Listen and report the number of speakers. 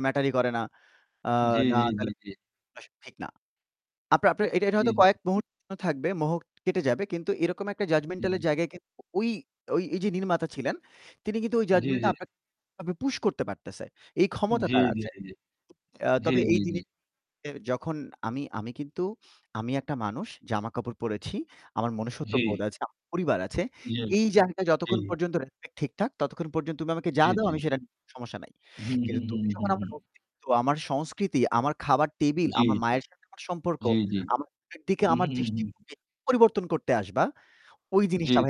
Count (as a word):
two